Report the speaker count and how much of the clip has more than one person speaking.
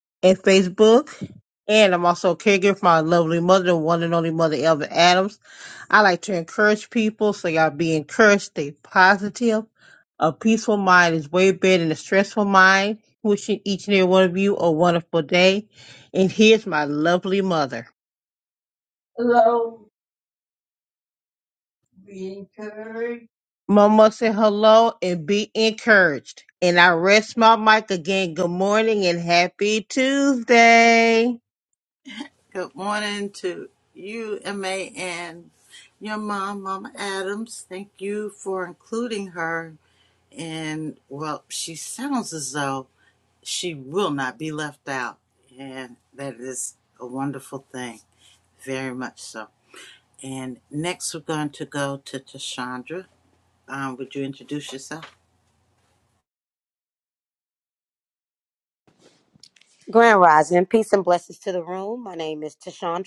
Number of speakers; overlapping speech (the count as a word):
three, no overlap